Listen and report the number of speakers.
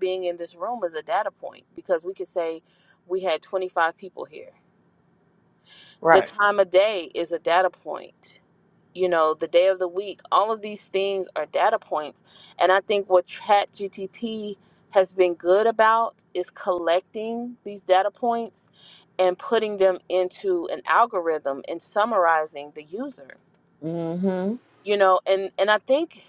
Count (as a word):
two